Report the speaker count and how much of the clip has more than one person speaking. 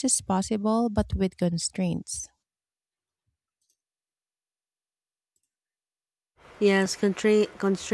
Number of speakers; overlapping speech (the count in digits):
2, no overlap